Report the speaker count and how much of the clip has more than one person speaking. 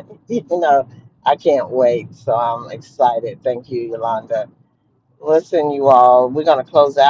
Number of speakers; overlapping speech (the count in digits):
1, no overlap